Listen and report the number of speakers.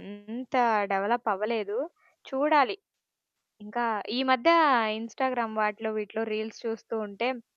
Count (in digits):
1